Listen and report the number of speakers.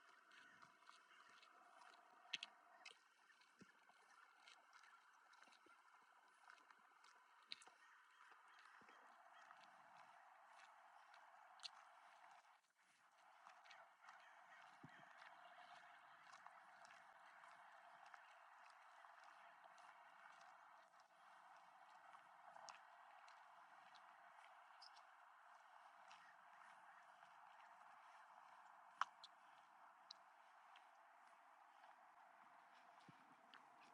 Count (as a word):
zero